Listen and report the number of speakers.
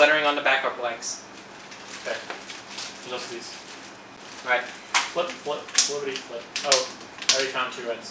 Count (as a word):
two